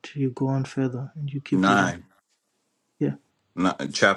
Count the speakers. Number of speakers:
2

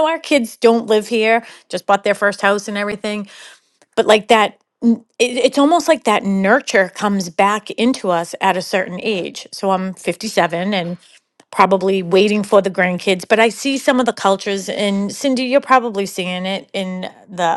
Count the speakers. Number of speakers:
1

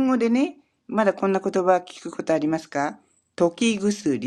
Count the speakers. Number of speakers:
1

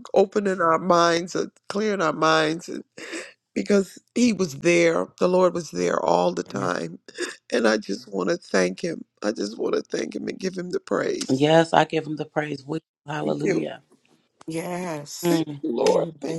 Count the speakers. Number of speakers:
3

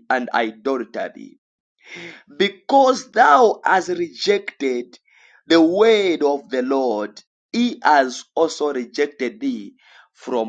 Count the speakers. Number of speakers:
1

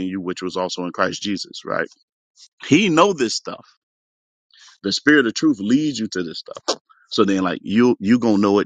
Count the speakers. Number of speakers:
1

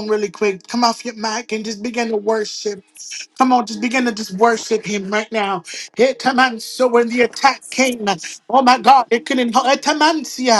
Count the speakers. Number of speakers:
1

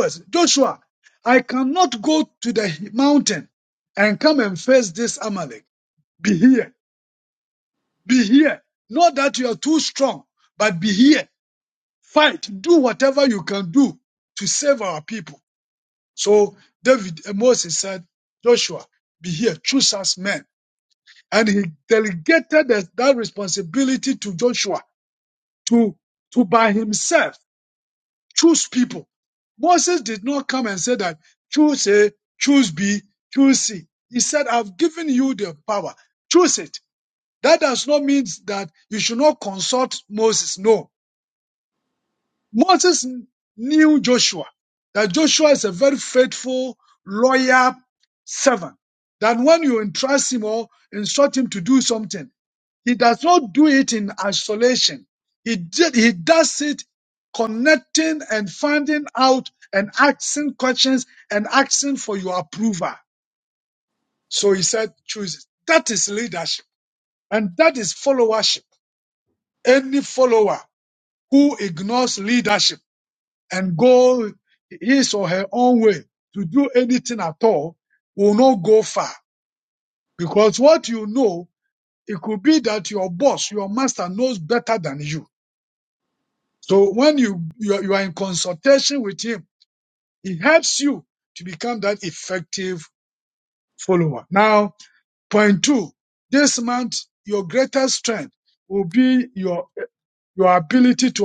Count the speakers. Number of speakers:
1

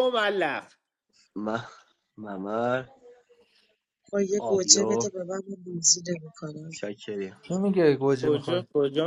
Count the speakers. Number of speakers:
4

